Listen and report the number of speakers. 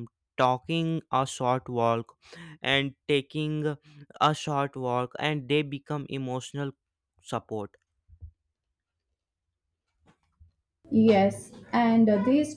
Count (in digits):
2